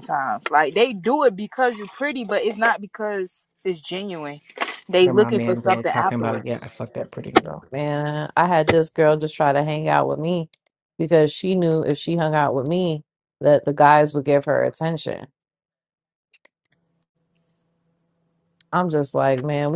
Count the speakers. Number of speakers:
3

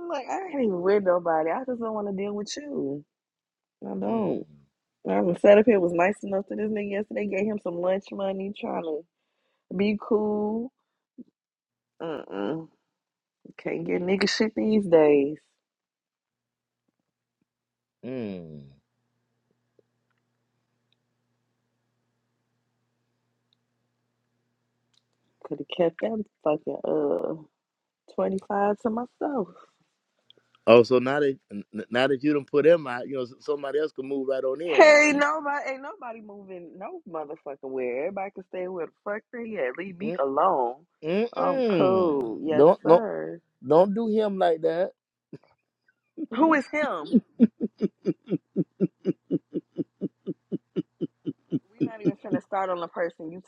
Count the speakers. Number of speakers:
2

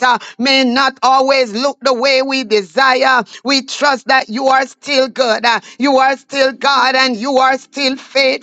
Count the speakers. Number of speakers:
1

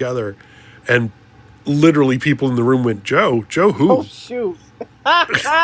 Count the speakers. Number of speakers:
2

